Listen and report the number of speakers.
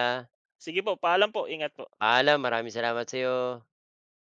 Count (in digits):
2